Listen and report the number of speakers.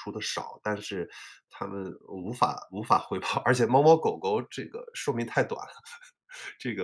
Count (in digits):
1